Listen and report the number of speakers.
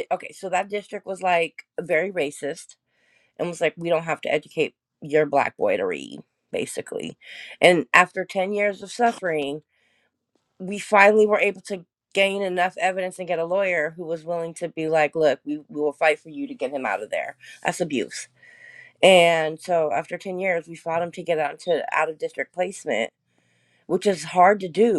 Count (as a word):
one